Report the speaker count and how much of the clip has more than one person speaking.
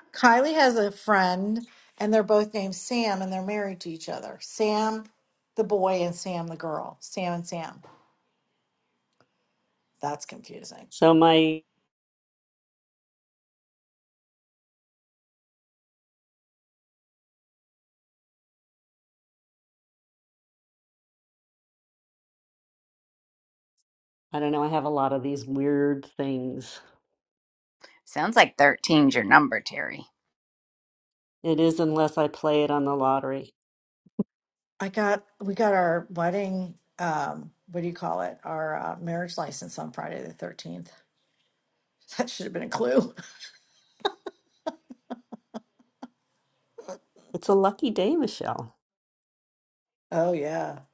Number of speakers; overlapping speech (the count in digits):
3, no overlap